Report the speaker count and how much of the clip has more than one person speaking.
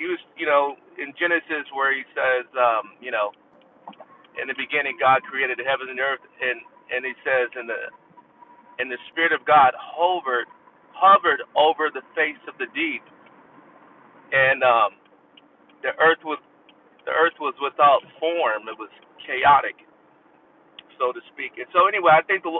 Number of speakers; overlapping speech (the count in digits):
1, no overlap